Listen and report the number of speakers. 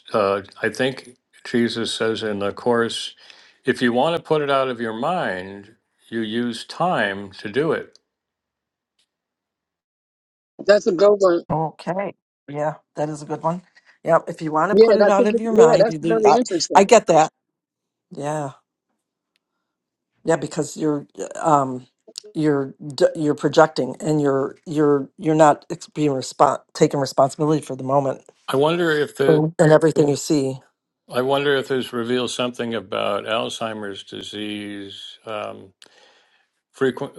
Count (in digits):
3